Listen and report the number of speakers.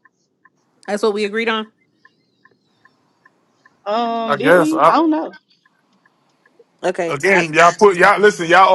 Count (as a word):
three